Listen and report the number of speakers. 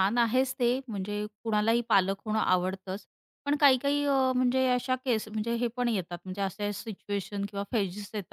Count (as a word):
one